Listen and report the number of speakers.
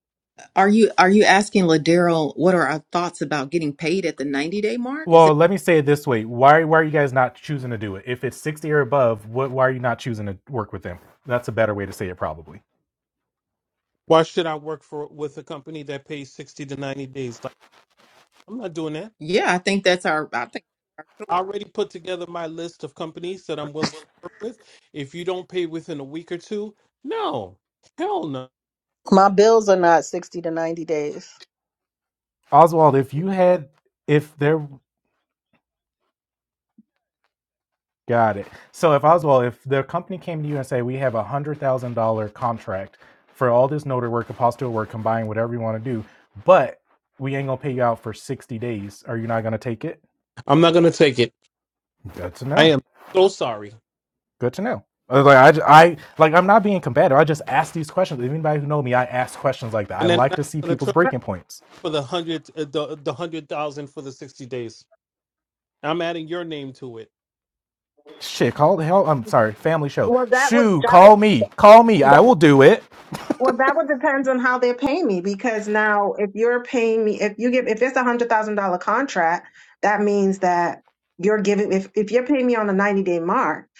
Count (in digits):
5